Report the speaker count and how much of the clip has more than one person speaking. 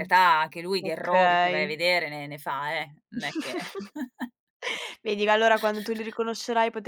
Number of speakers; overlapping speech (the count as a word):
two, about 14%